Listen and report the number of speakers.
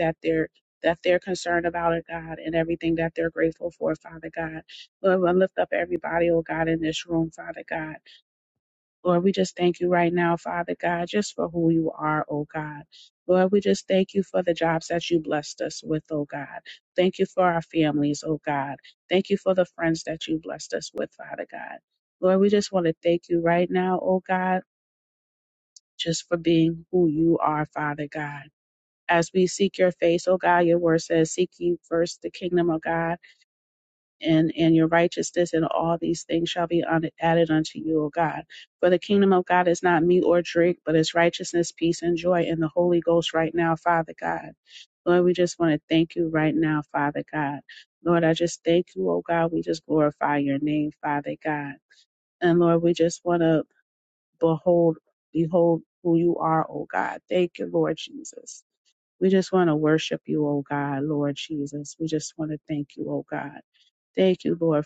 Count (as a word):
one